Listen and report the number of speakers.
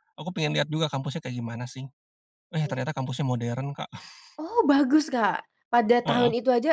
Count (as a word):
two